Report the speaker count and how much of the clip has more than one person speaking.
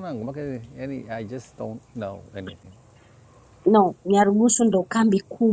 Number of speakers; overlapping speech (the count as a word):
two, no overlap